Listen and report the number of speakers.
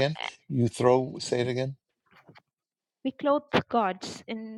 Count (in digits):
2